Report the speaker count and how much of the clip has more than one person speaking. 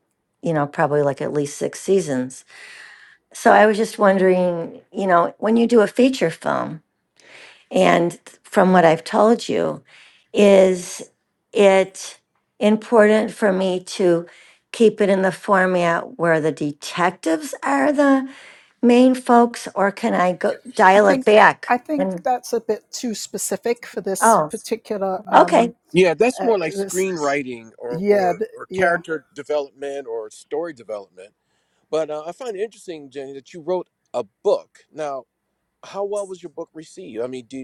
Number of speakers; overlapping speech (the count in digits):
3, about 7%